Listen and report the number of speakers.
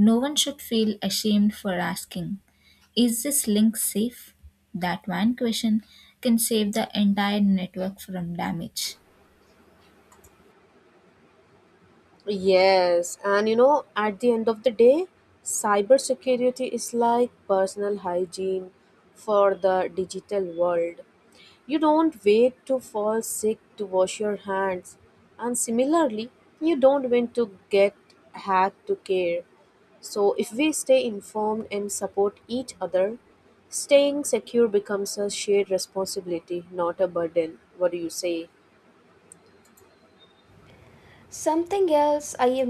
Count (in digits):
3